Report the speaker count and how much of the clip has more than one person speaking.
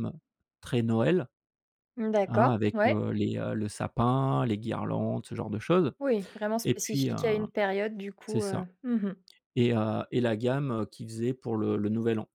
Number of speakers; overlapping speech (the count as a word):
two, about 12%